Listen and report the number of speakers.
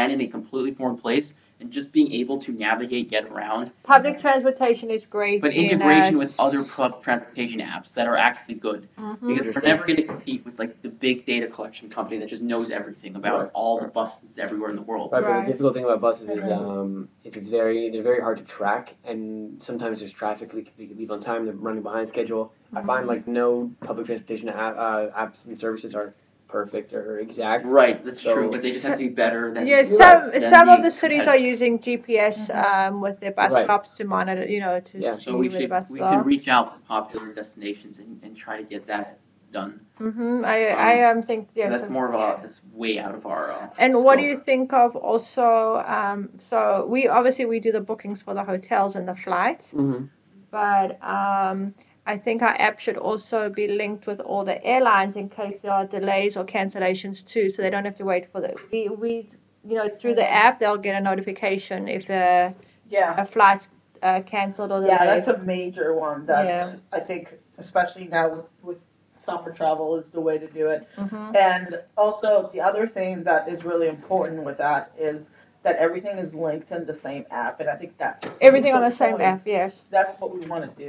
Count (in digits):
4